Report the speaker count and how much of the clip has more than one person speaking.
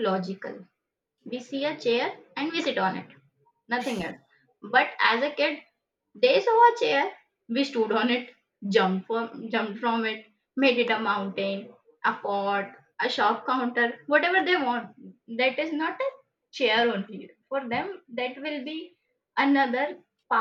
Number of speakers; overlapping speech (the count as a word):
one, no overlap